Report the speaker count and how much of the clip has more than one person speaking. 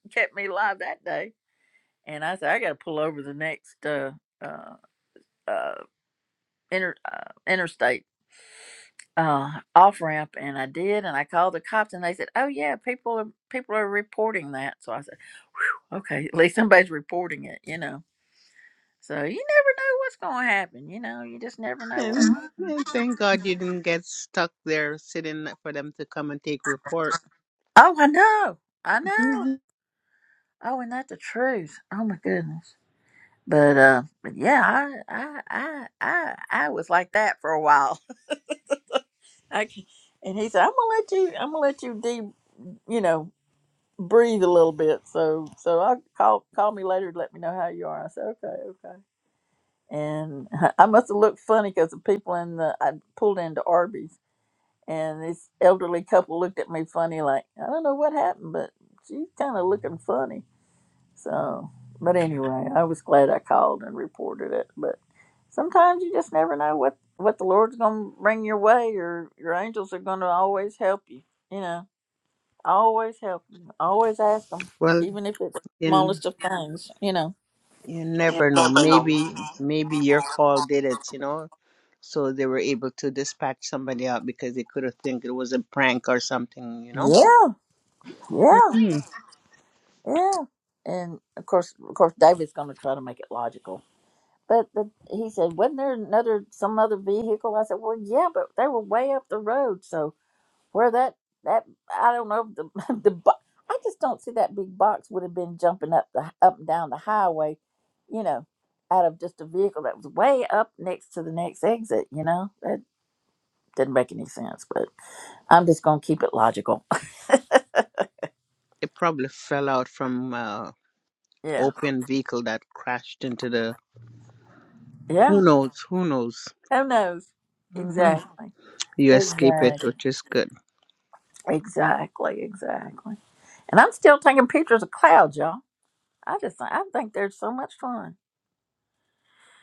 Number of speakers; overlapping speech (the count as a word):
two, about 2%